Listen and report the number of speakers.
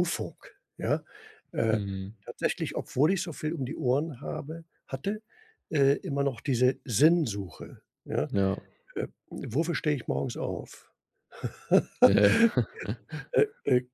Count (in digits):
2